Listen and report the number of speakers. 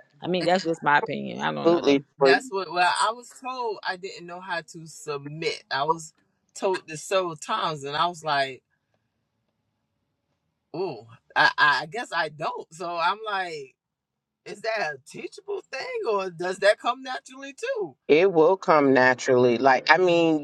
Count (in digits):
3